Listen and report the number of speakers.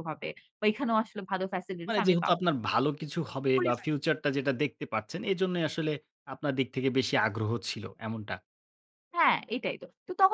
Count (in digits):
2